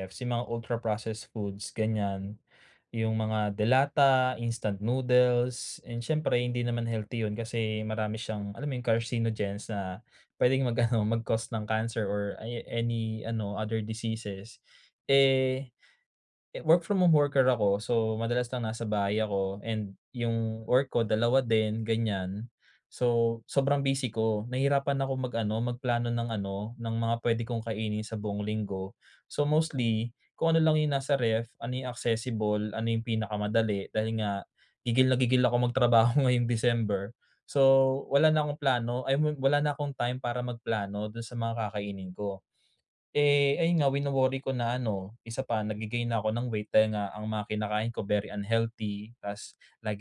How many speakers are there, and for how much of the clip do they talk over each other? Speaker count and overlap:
one, no overlap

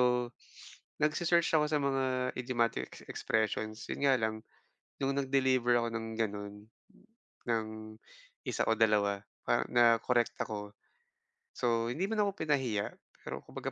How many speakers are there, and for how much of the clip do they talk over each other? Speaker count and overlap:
one, no overlap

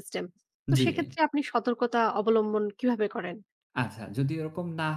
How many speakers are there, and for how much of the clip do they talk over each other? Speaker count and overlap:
two, about 8%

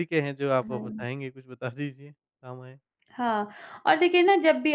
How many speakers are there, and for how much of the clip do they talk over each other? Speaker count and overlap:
two, about 8%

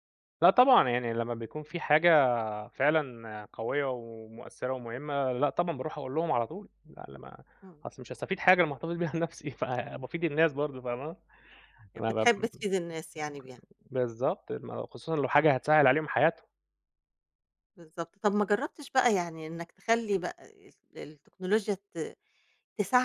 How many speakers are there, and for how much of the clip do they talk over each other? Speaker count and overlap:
two, about 2%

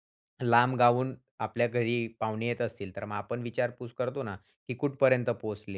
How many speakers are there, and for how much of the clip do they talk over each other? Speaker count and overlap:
one, no overlap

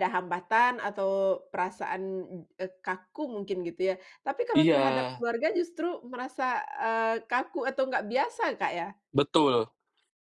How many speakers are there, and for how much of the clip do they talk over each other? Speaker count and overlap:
two, about 6%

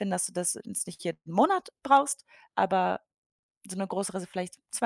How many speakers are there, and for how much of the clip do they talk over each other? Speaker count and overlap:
one, no overlap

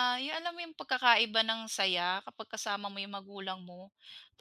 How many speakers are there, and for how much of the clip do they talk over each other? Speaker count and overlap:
one, no overlap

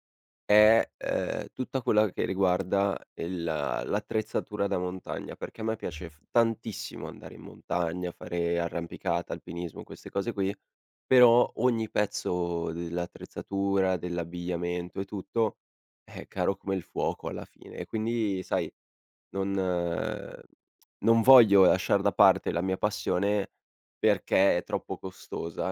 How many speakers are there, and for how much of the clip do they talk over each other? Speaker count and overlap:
one, no overlap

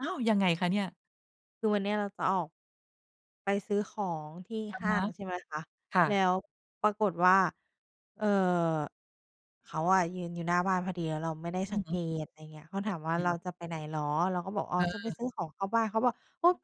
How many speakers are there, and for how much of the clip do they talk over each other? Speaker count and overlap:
two, about 7%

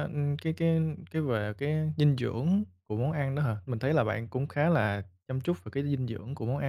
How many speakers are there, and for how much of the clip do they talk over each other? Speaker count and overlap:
one, no overlap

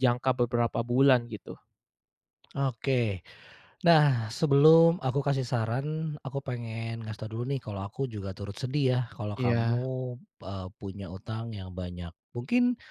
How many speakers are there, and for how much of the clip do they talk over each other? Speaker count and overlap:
two, about 4%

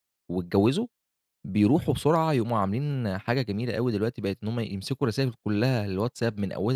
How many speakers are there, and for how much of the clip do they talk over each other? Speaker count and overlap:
one, no overlap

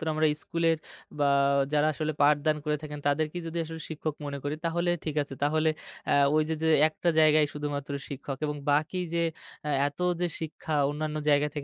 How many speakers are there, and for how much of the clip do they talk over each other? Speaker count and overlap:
one, no overlap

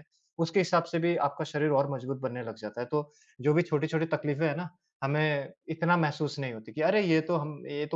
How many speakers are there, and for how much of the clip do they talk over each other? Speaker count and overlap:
one, no overlap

